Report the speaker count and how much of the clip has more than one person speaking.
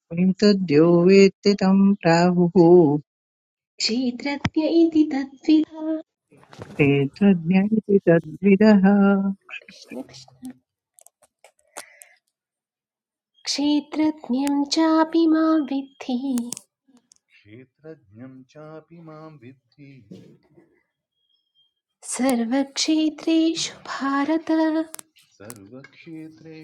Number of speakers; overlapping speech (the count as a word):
three, no overlap